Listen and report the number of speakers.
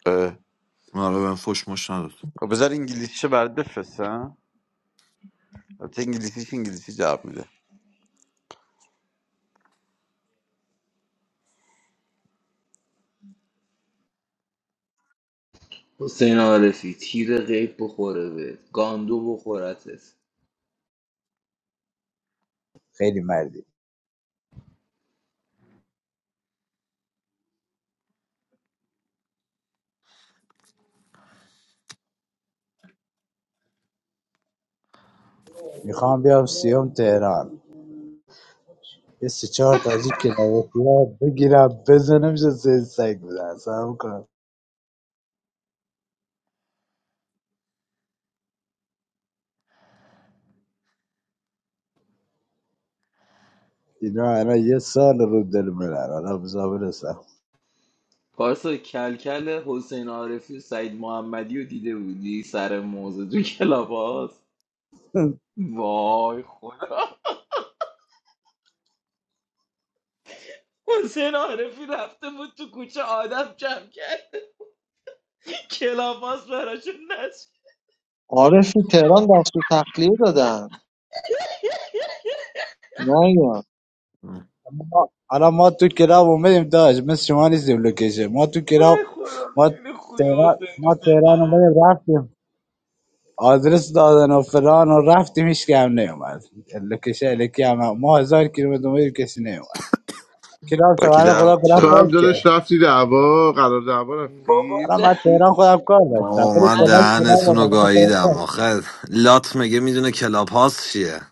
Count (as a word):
six